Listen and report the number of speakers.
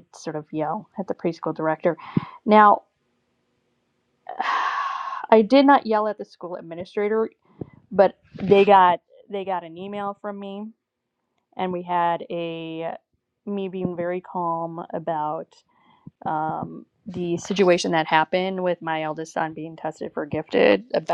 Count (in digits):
1